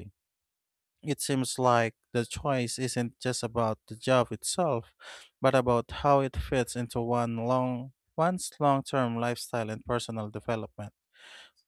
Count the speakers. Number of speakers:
1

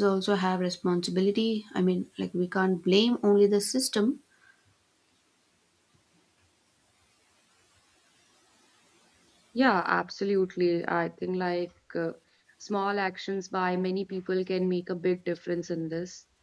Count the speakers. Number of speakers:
2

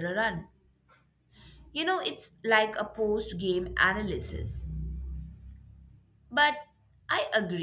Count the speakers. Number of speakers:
1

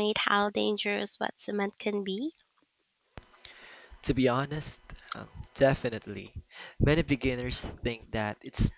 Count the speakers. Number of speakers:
2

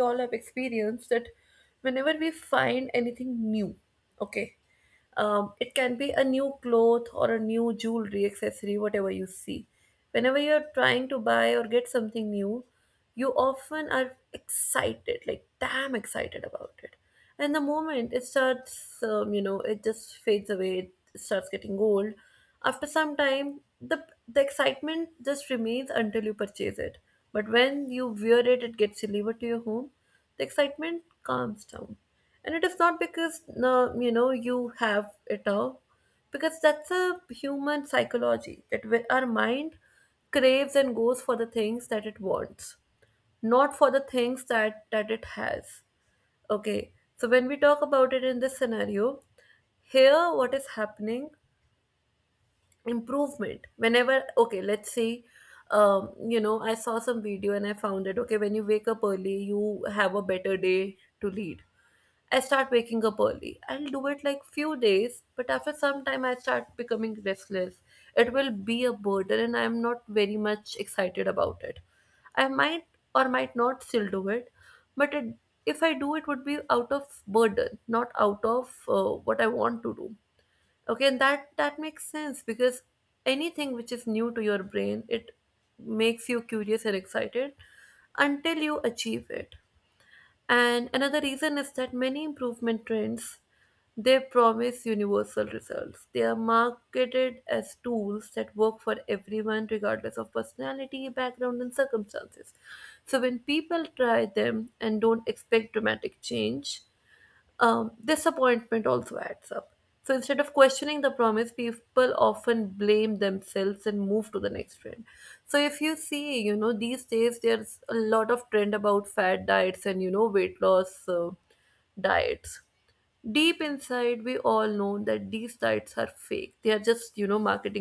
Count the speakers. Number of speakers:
1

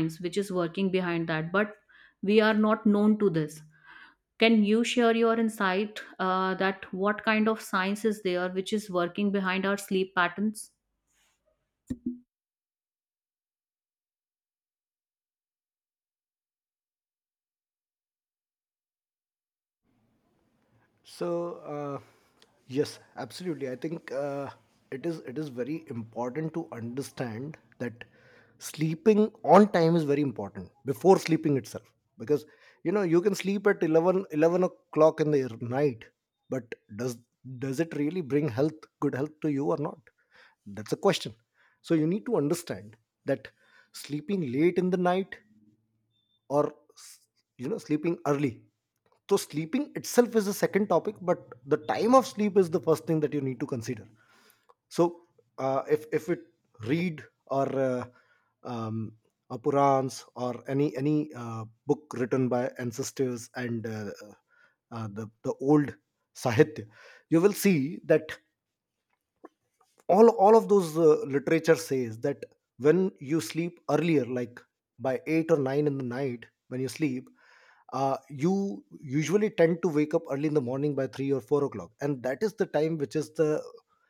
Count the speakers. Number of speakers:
2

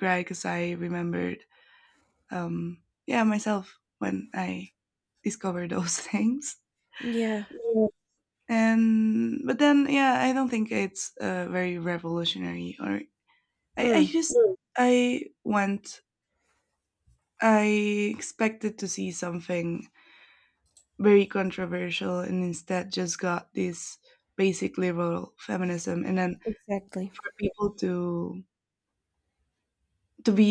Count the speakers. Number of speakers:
2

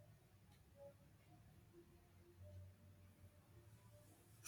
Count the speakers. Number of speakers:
0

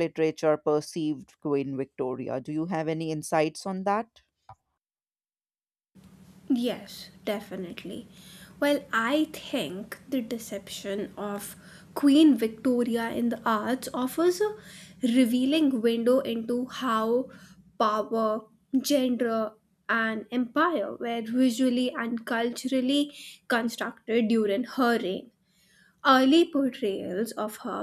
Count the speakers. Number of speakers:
2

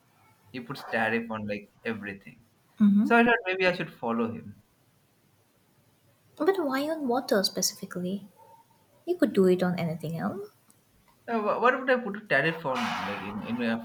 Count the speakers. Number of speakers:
2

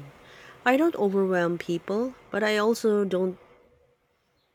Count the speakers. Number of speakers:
1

